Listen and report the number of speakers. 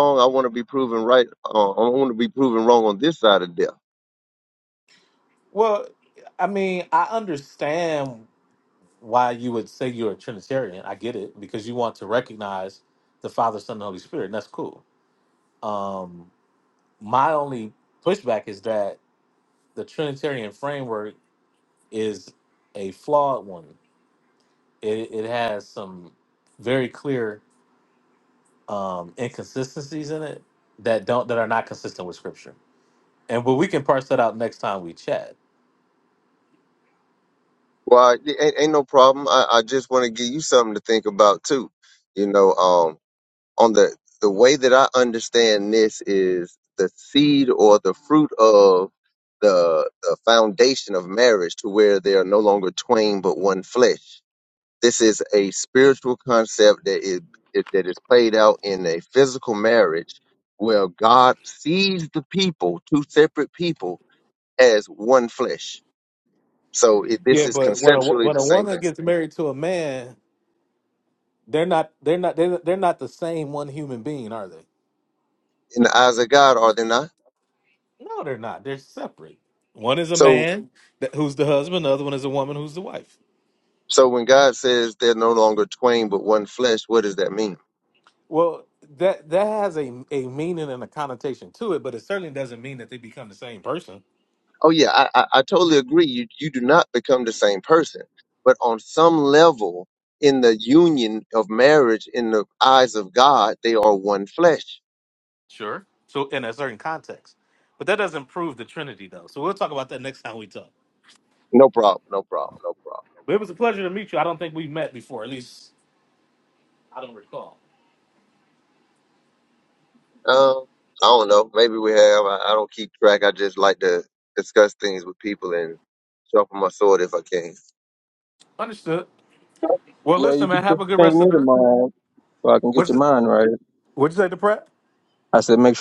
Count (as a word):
three